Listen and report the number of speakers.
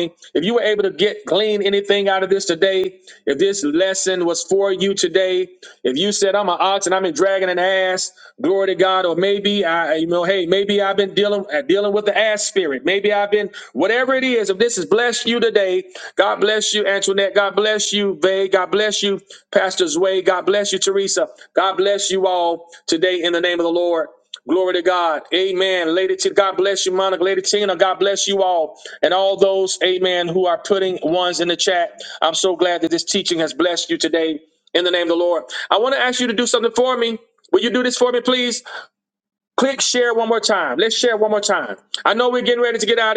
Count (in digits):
1